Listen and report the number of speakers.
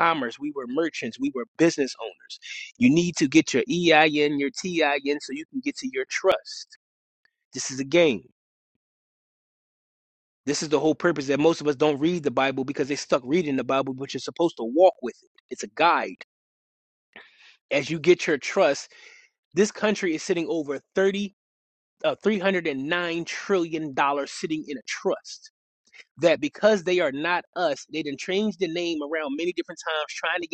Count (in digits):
1